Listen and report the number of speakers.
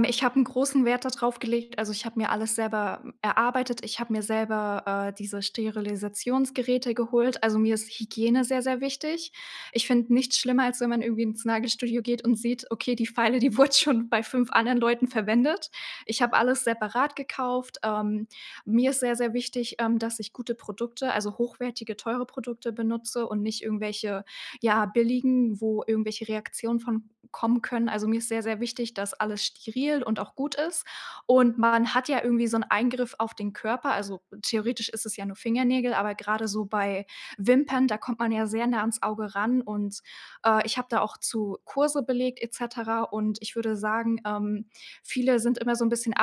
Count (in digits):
1